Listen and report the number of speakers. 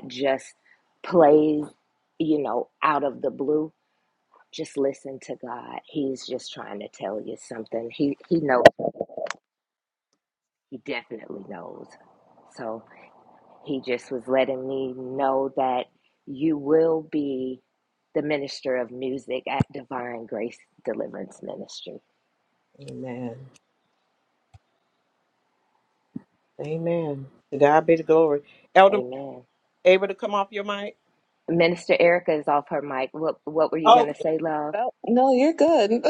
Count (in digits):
3